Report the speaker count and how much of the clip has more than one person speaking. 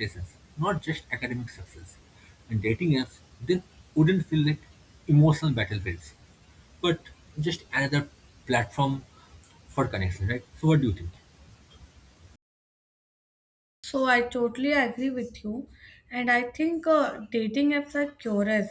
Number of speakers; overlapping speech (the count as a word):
two, no overlap